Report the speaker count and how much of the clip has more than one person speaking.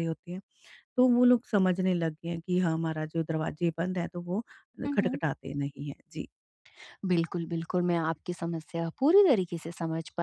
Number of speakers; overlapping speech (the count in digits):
2, about 3%